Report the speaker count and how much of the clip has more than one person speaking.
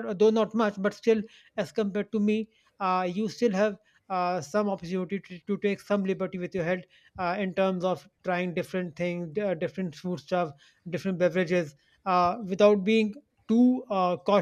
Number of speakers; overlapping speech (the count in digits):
1, no overlap